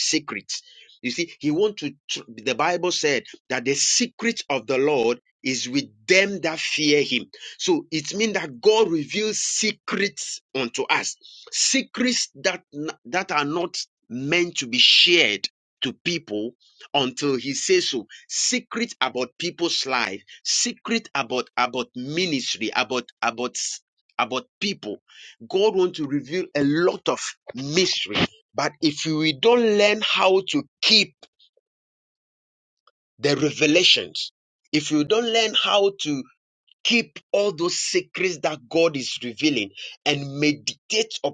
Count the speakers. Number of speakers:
1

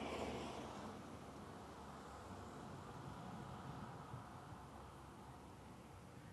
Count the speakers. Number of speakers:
0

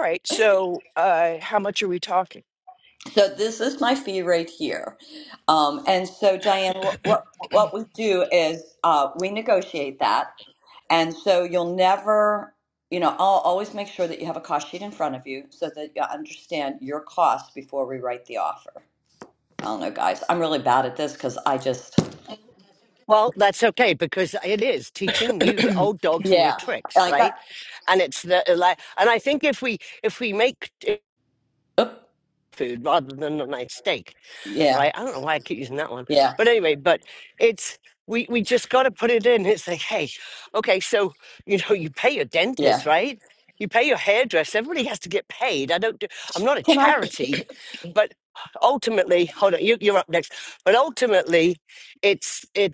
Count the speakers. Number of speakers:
3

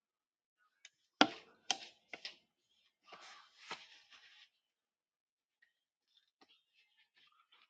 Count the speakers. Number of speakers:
0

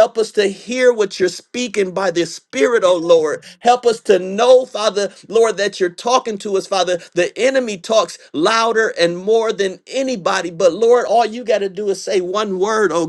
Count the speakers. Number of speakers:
1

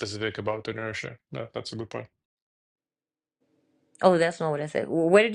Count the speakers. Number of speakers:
2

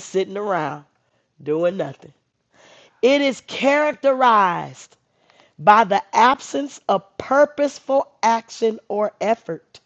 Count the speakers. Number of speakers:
1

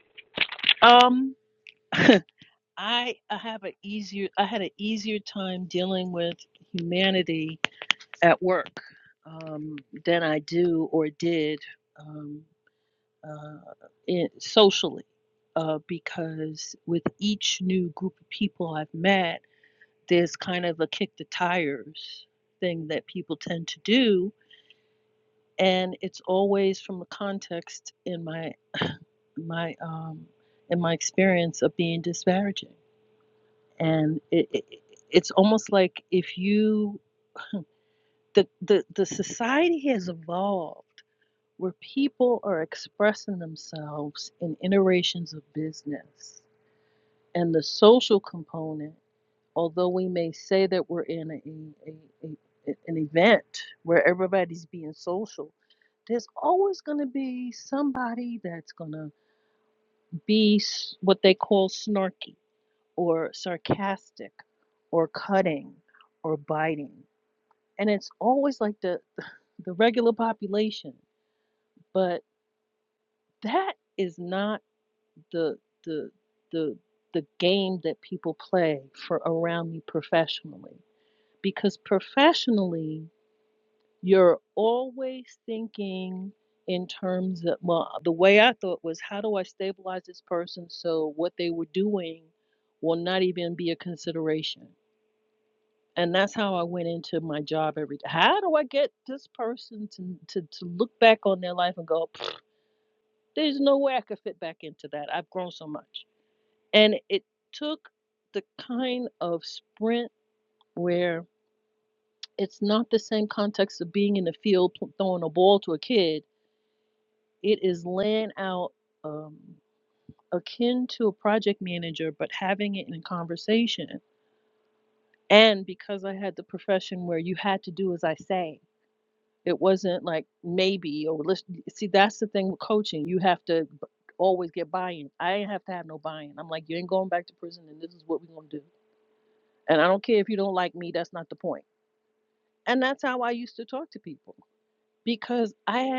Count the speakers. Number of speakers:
1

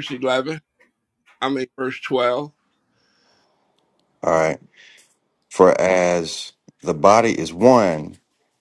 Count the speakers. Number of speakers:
2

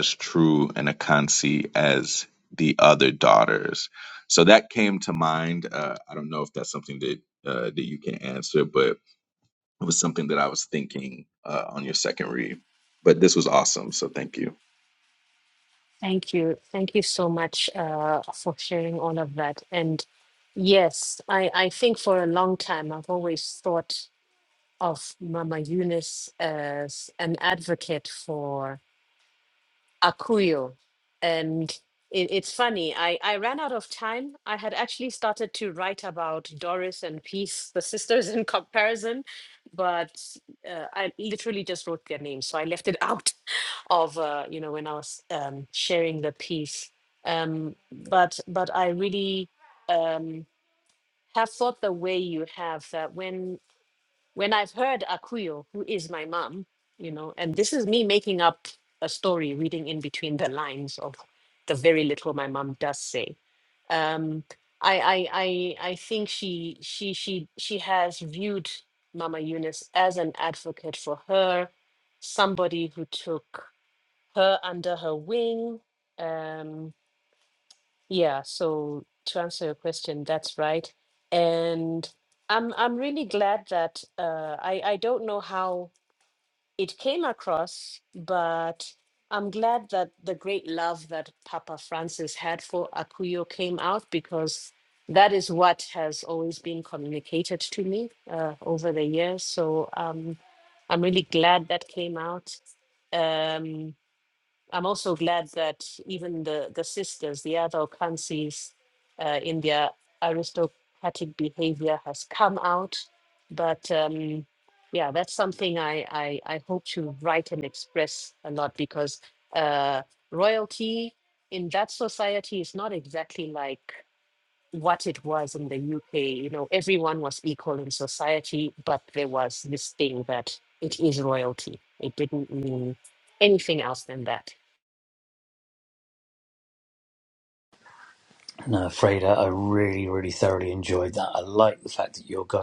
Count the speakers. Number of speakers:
3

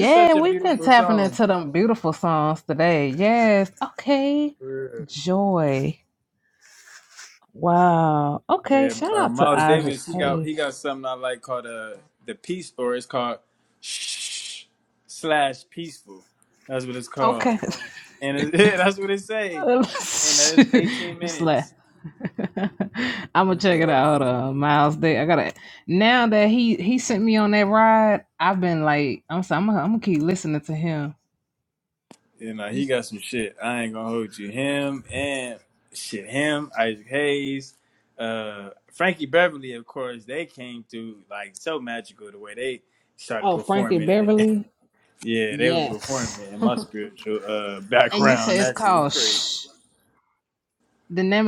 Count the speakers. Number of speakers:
2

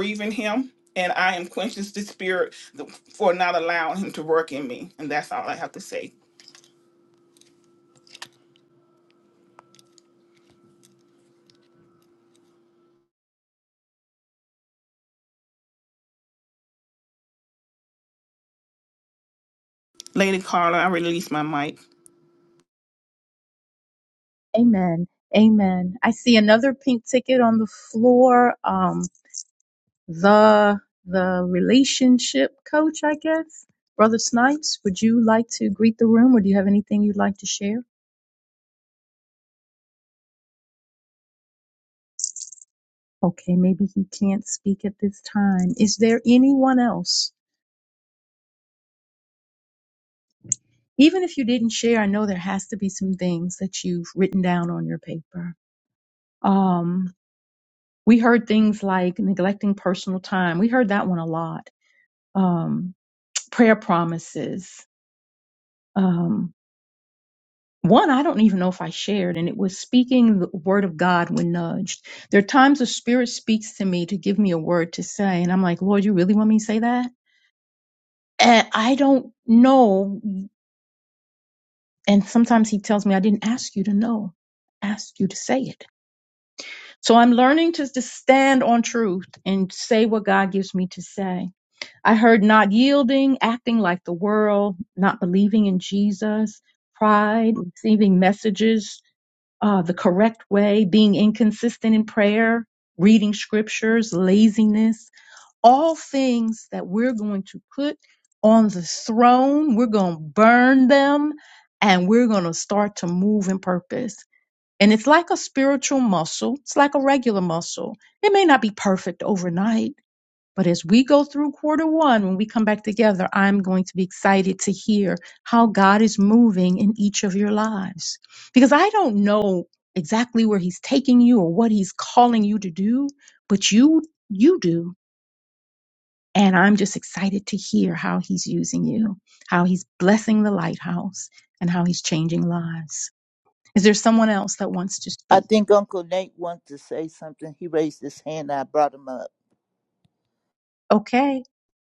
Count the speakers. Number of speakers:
3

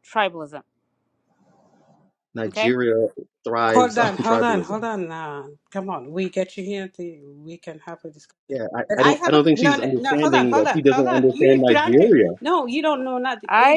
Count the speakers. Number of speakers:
3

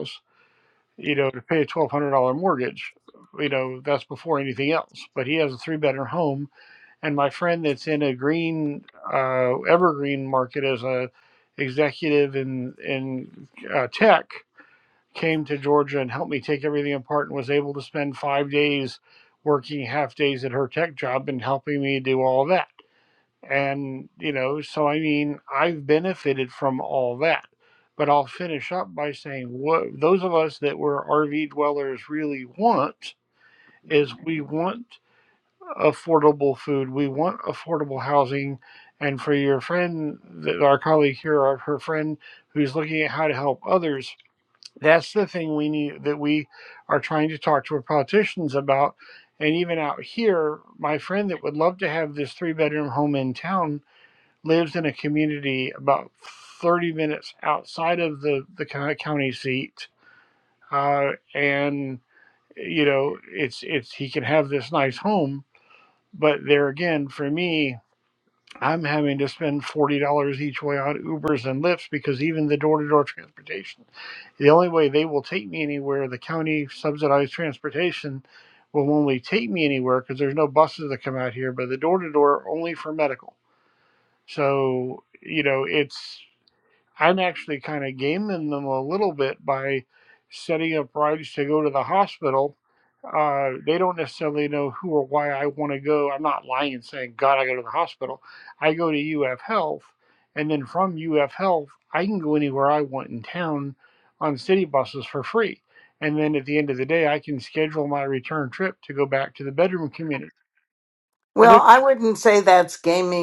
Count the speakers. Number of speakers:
2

